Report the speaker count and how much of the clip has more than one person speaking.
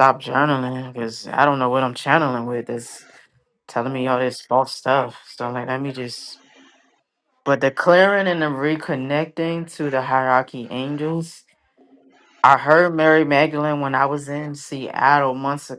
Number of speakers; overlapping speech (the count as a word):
one, no overlap